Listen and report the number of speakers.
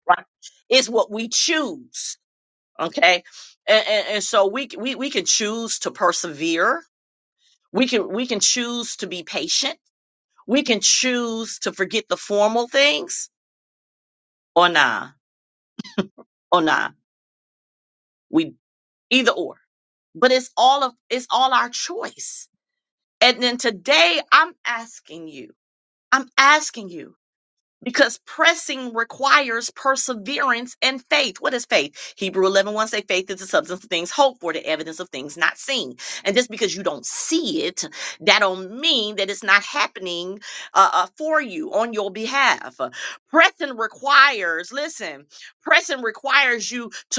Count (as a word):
one